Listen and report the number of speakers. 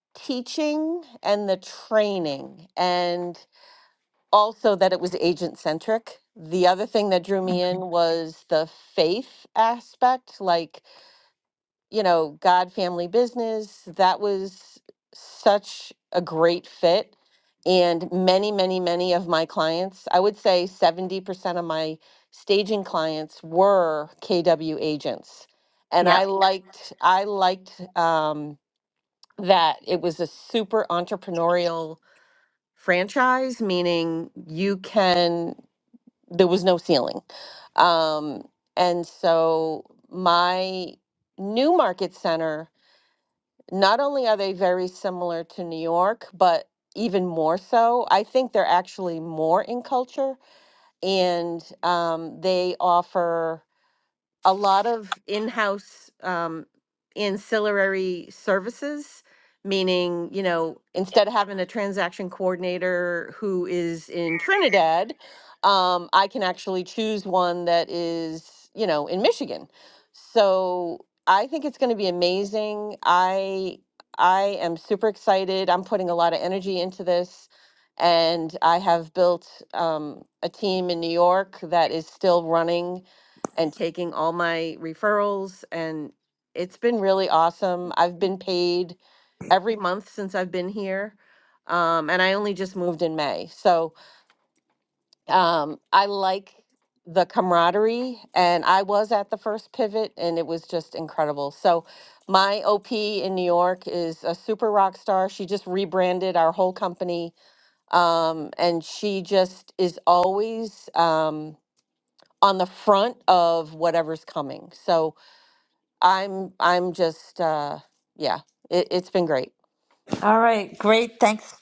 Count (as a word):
two